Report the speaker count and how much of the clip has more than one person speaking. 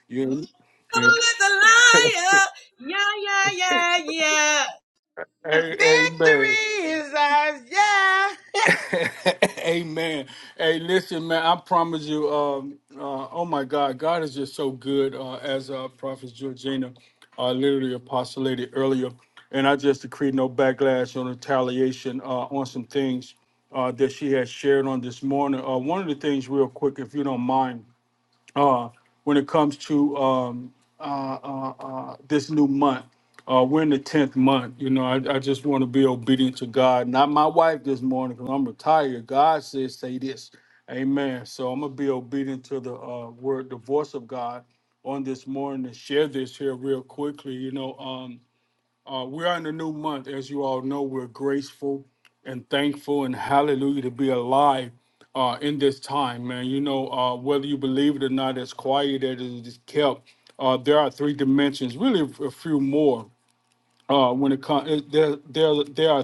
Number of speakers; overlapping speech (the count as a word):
three, about 2%